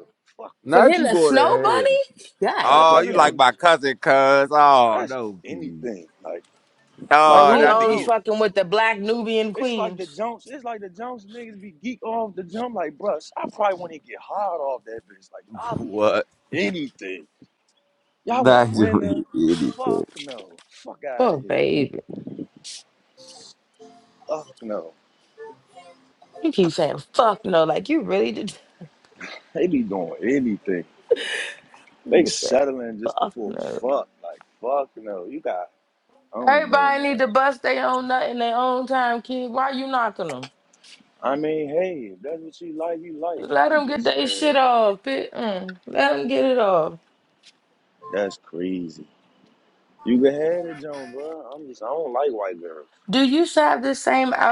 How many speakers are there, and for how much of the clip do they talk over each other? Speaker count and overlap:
three, about 17%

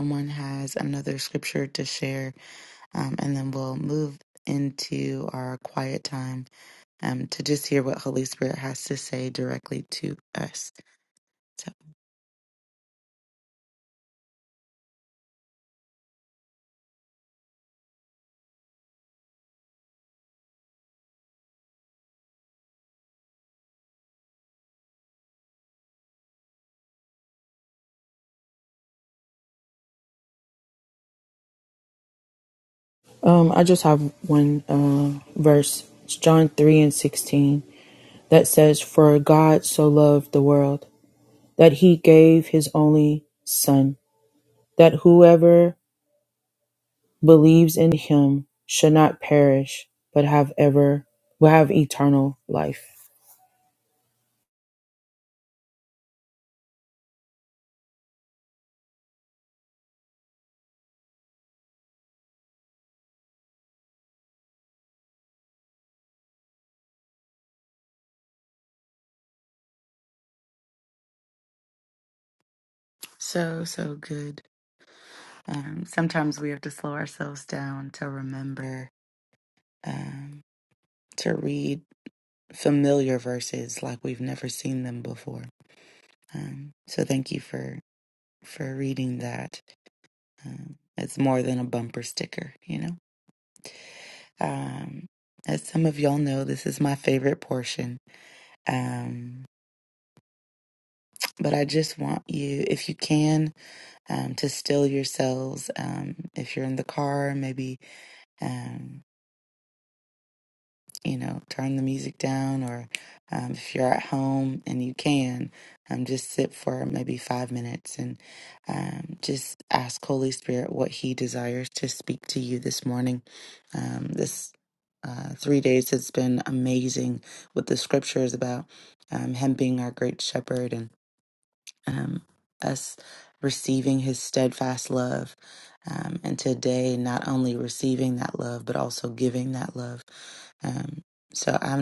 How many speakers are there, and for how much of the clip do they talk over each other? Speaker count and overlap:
two, no overlap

